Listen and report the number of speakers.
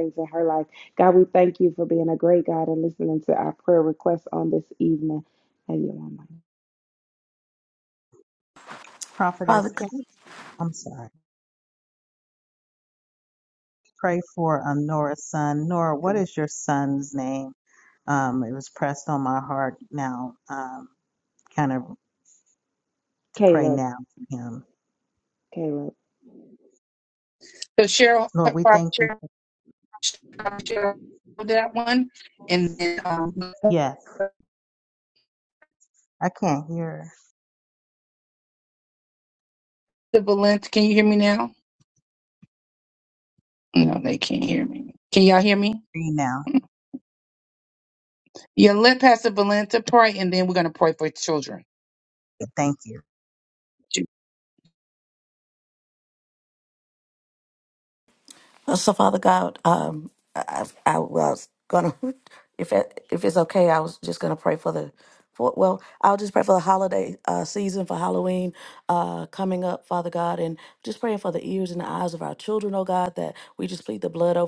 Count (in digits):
4